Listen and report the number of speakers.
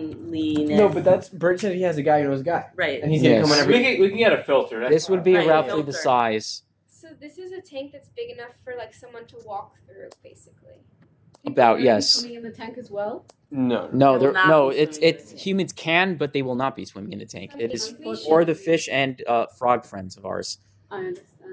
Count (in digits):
6